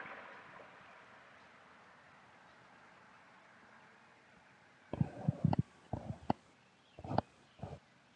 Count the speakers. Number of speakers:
0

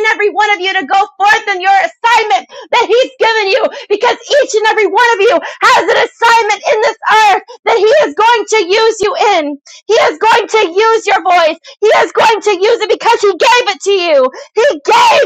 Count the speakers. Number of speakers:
1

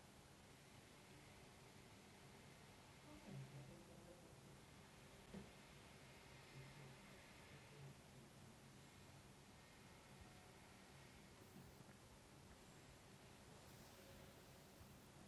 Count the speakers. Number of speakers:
0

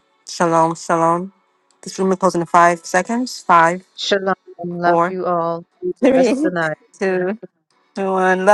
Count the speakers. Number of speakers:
2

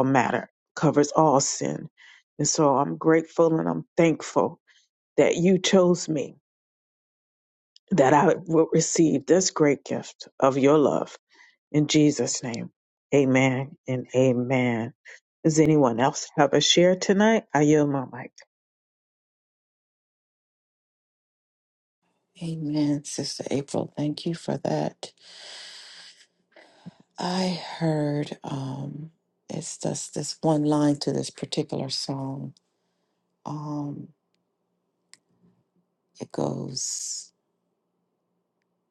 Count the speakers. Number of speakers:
2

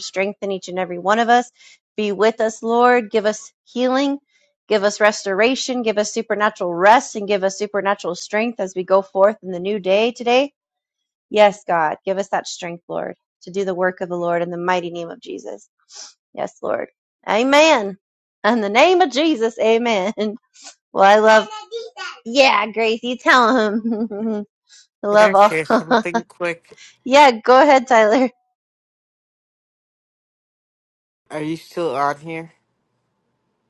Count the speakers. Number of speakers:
2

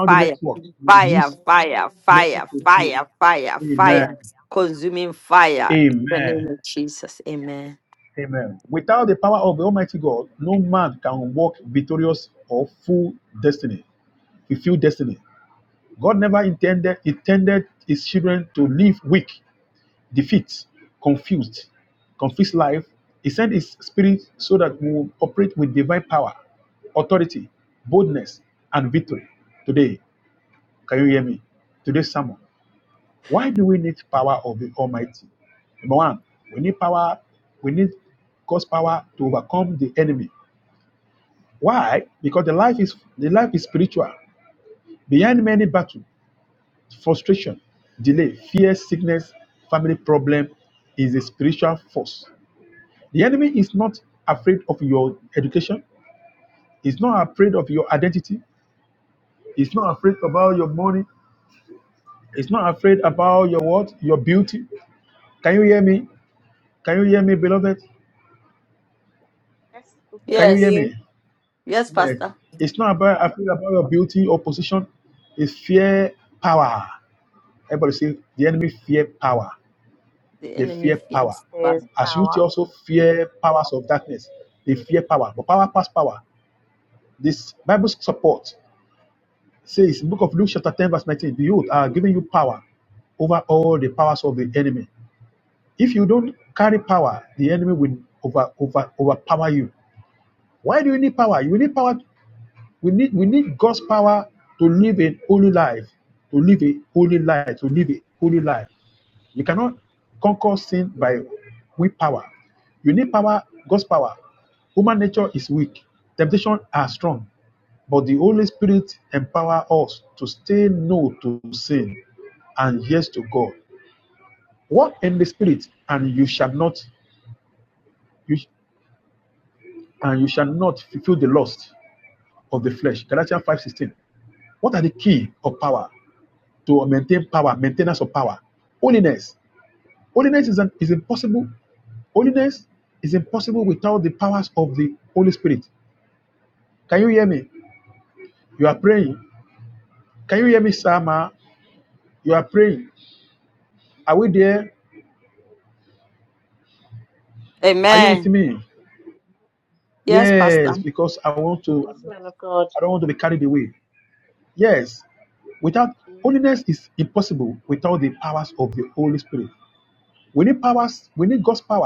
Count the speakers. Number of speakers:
3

